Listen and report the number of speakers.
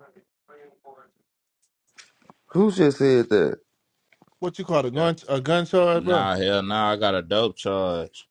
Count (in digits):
3